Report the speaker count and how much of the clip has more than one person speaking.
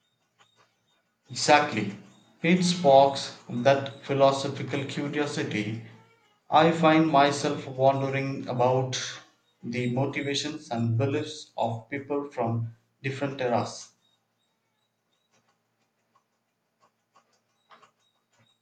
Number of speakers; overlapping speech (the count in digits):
1, no overlap